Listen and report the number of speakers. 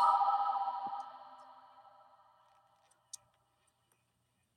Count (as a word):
zero